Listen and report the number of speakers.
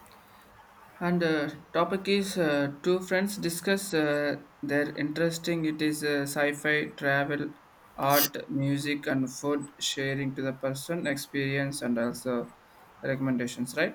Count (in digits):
1